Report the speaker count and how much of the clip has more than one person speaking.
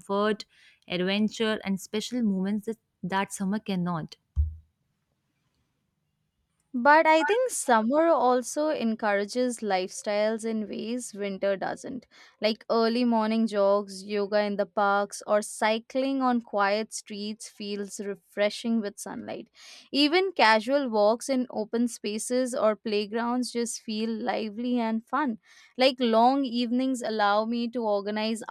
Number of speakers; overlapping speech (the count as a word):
two, no overlap